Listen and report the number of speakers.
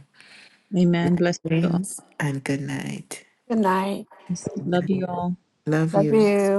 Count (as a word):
three